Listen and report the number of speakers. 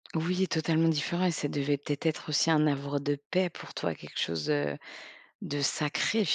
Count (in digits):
1